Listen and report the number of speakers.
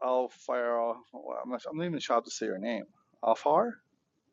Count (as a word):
one